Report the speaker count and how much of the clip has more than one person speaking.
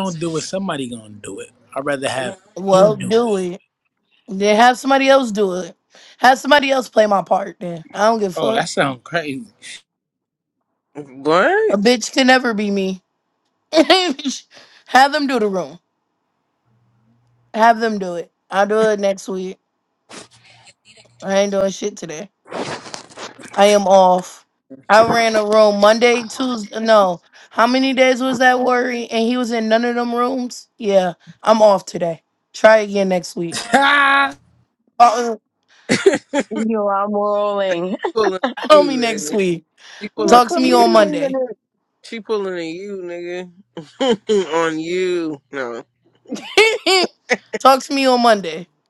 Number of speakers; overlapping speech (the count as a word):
four, about 6%